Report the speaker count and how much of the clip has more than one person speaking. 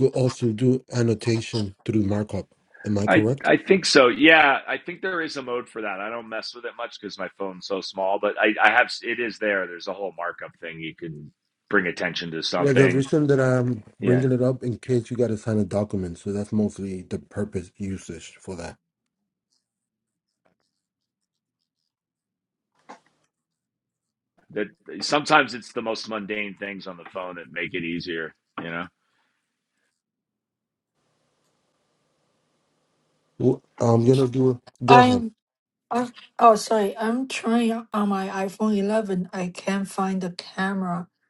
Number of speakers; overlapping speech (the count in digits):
3, about 4%